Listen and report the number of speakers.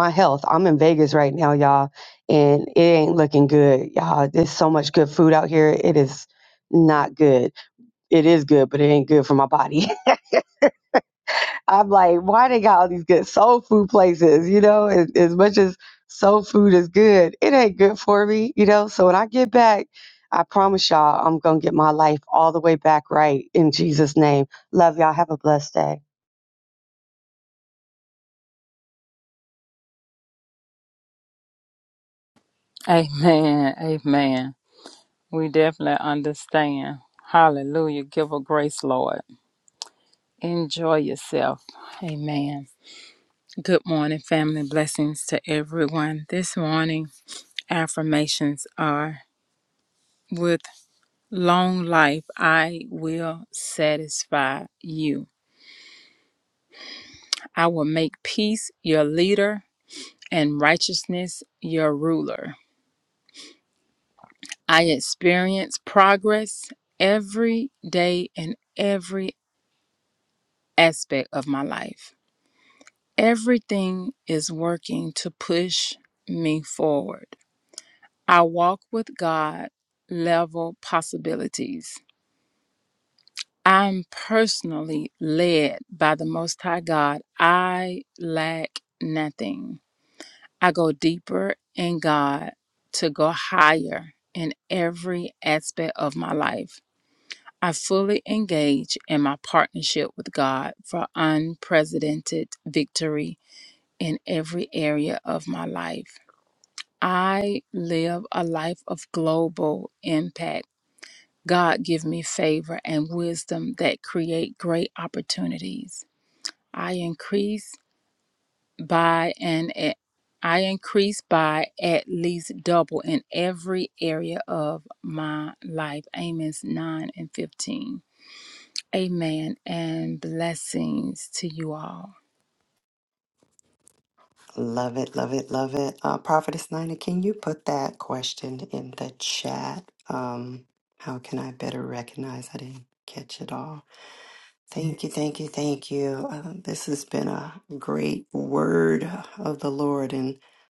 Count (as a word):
three